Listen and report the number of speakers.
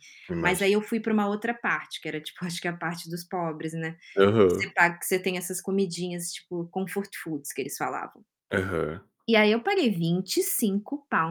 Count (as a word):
two